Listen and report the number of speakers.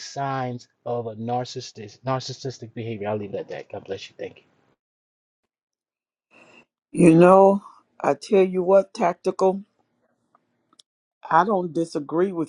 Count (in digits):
2